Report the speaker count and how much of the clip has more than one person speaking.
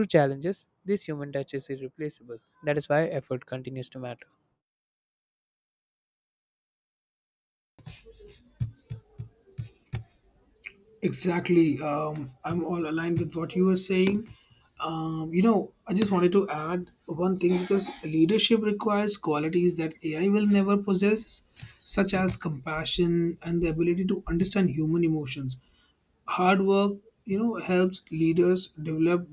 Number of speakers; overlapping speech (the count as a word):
two, no overlap